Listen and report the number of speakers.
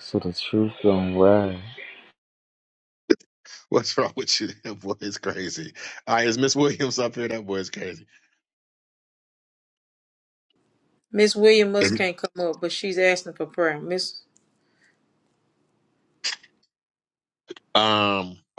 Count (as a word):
three